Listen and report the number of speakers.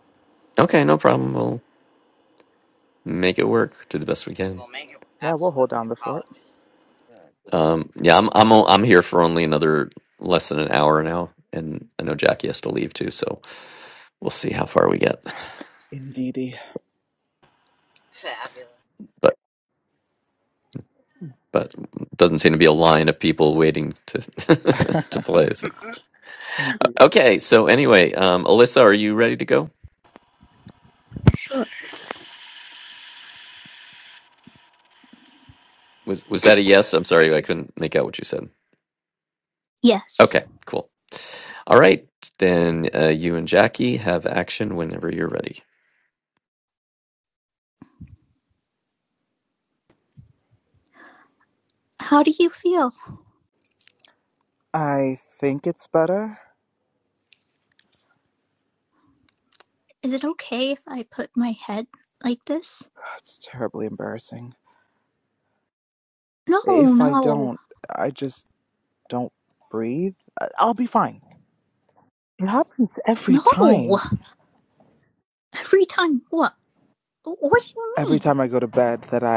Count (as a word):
four